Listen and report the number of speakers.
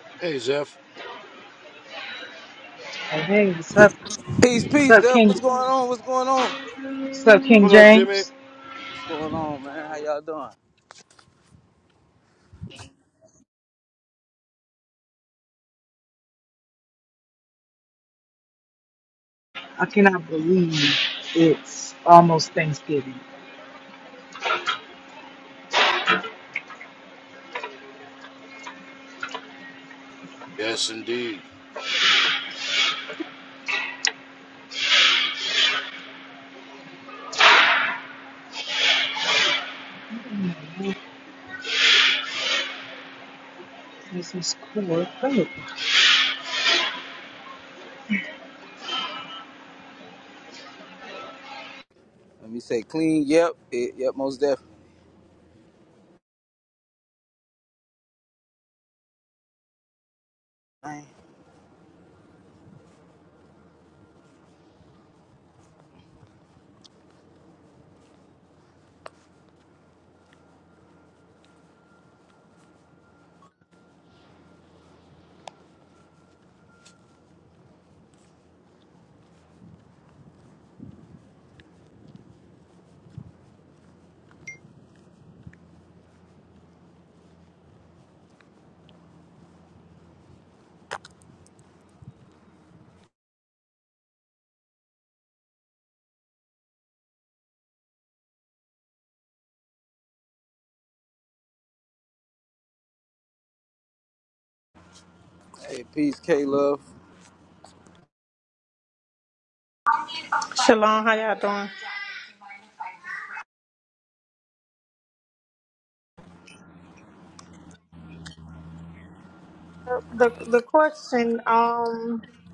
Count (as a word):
four